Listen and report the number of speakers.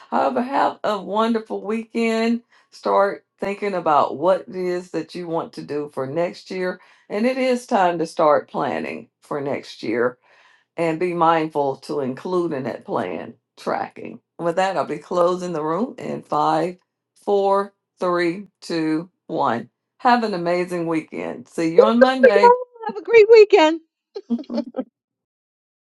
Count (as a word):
two